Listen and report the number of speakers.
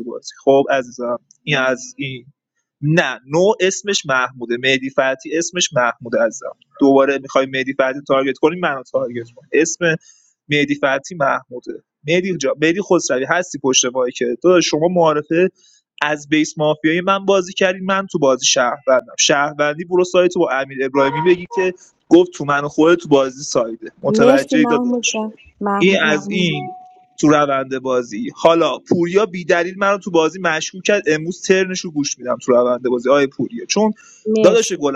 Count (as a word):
two